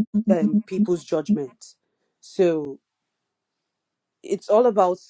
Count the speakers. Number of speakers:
1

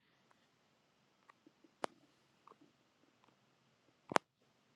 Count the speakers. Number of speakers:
0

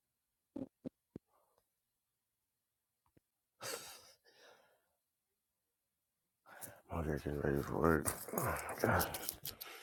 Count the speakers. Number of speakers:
1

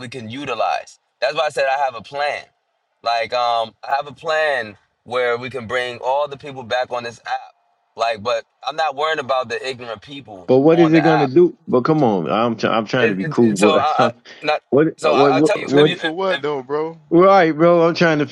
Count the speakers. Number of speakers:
3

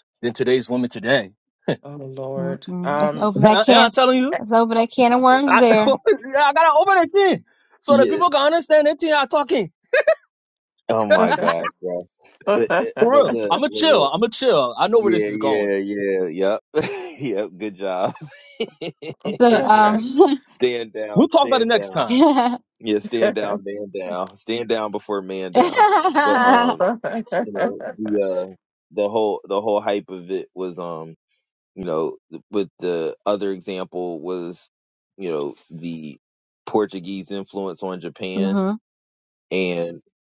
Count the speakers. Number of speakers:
4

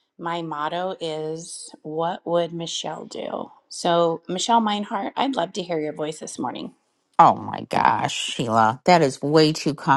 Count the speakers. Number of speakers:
2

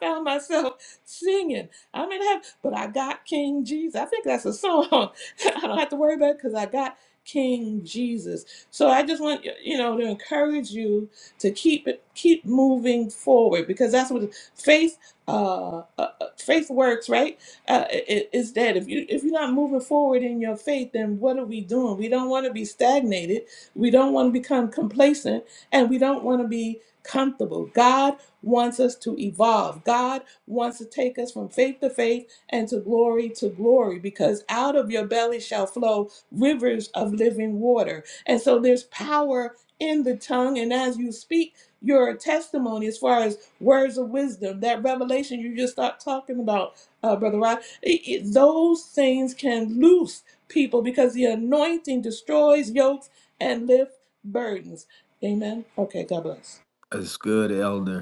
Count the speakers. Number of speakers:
2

